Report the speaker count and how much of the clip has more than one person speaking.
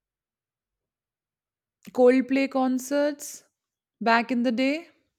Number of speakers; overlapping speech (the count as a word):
one, no overlap